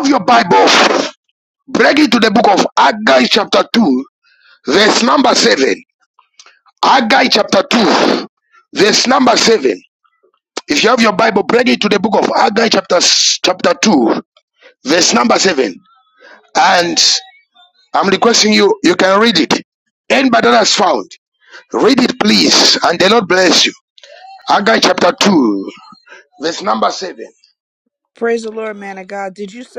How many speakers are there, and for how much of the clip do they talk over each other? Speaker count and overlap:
two, no overlap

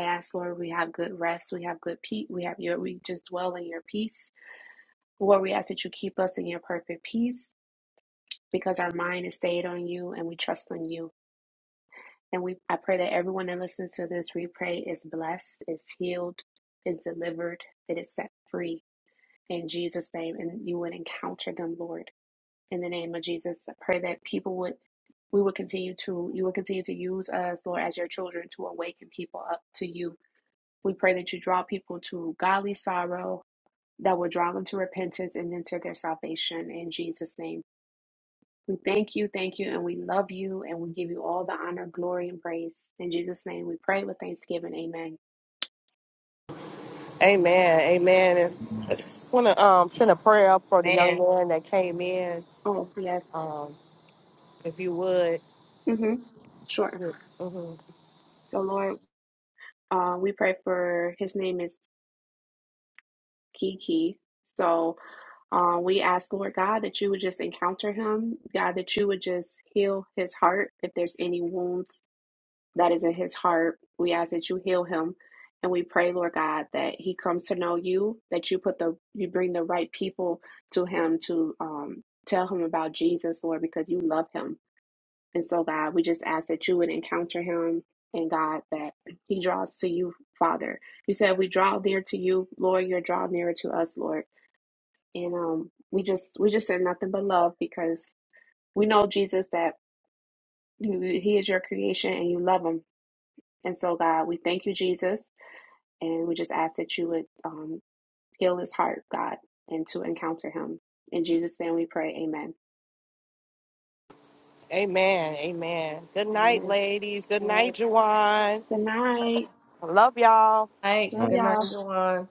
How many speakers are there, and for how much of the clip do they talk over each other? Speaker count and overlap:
three, about 1%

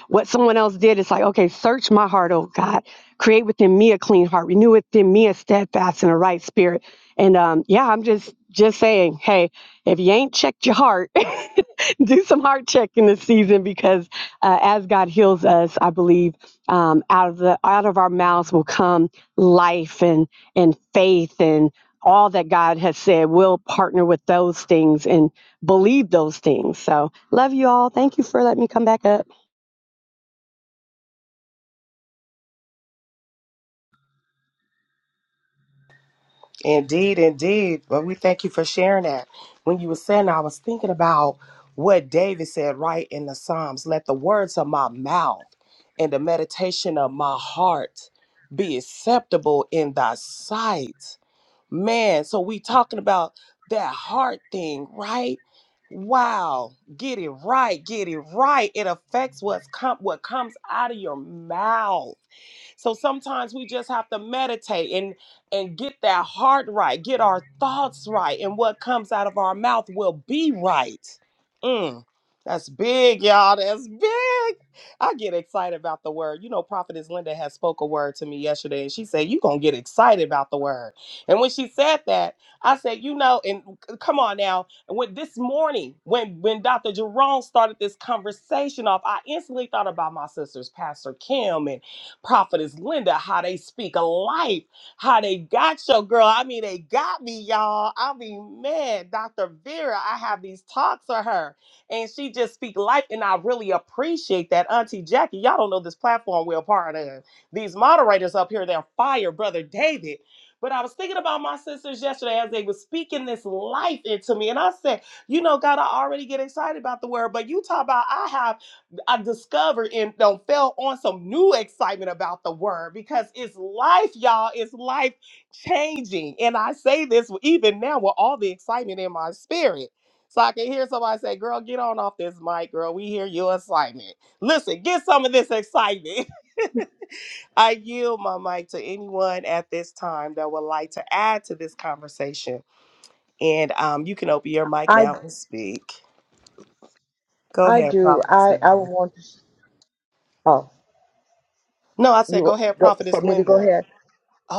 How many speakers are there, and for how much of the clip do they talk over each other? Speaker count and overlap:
three, about 2%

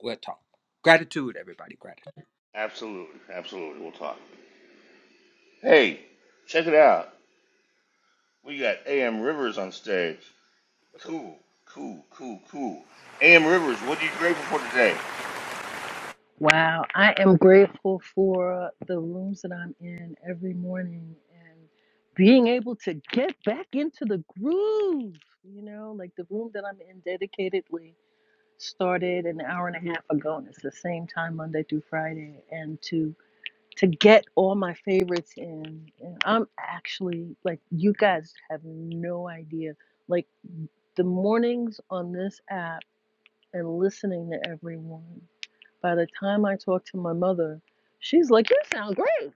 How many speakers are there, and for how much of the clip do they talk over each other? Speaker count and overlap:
three, no overlap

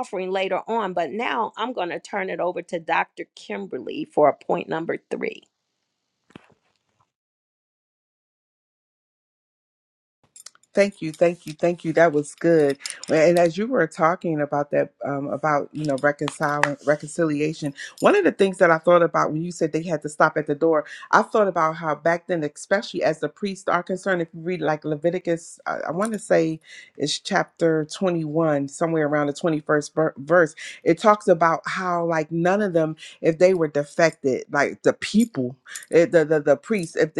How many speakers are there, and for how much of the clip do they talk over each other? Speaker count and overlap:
two, no overlap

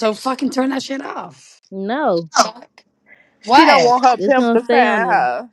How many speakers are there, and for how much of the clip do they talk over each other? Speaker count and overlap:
three, about 26%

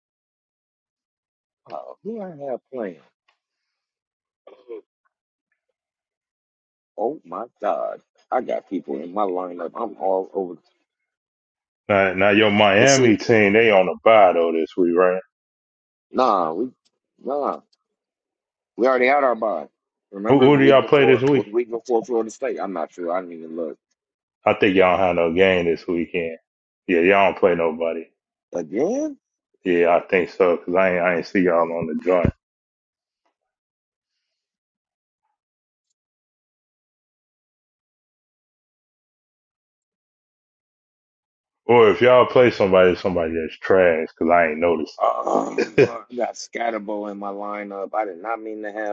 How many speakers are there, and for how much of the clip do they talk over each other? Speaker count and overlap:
two, about 3%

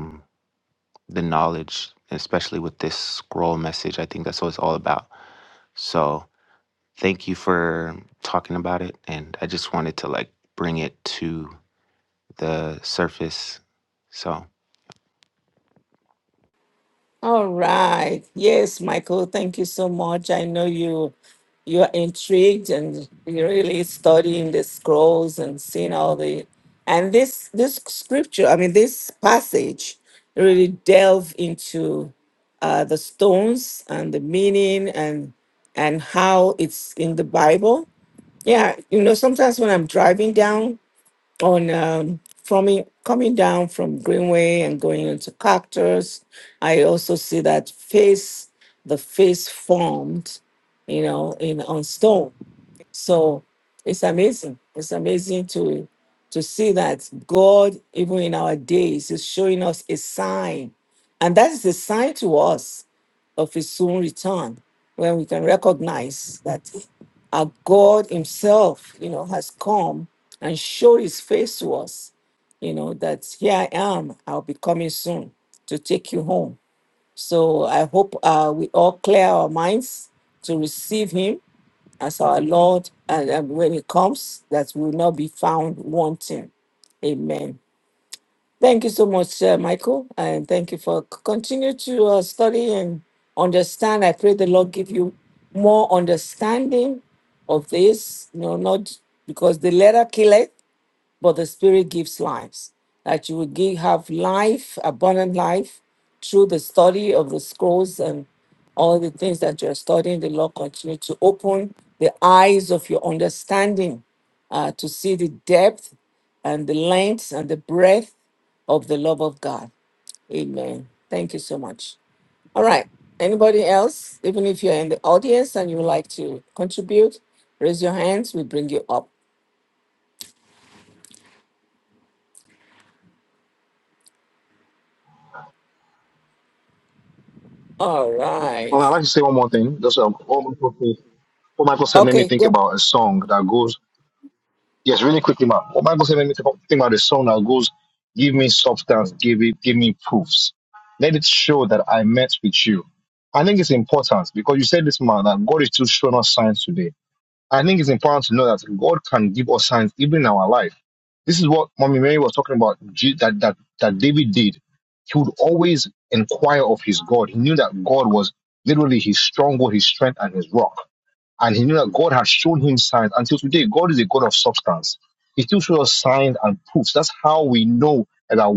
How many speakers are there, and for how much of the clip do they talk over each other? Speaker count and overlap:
three, under 1%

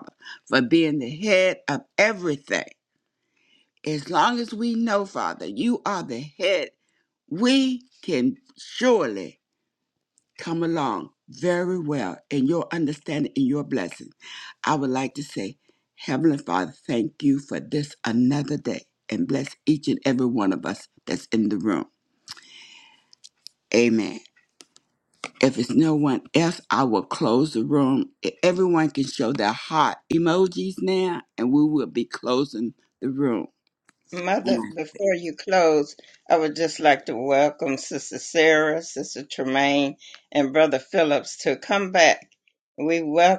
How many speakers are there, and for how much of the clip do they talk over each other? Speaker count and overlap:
two, about 1%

